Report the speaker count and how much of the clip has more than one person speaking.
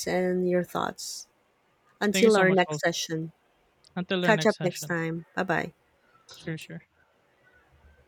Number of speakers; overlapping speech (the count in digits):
2, about 16%